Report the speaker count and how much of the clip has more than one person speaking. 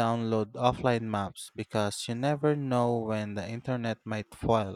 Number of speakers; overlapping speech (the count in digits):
1, no overlap